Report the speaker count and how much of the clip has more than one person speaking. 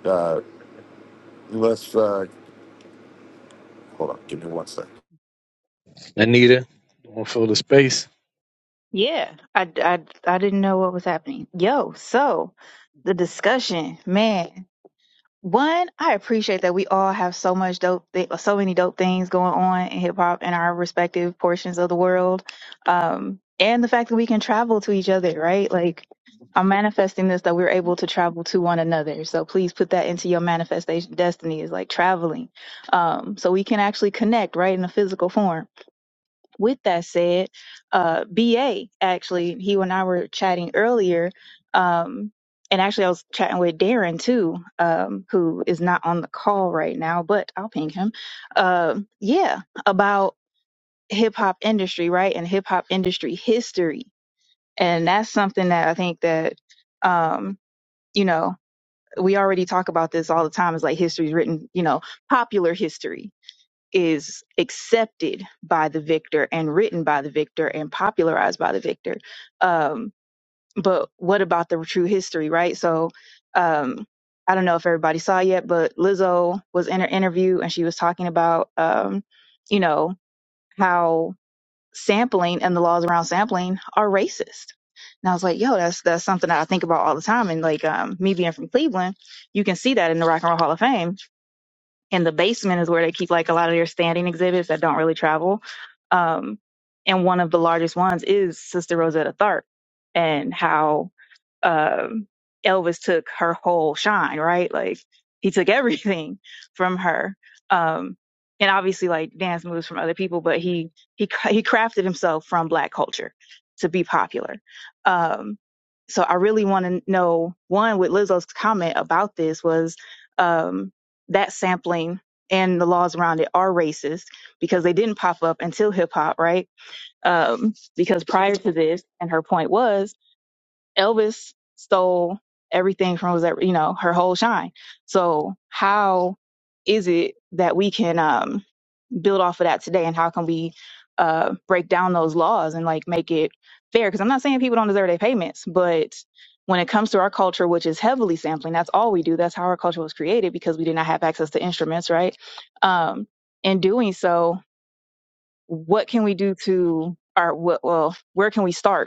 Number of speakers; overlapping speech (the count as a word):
three, no overlap